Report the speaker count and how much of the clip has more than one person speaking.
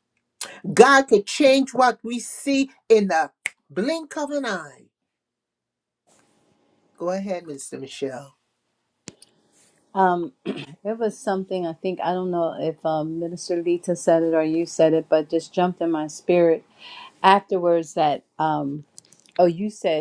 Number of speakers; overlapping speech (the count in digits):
2, no overlap